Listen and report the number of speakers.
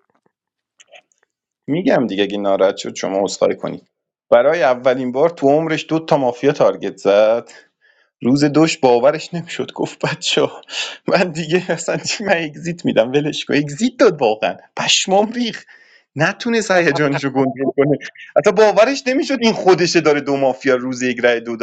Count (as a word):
one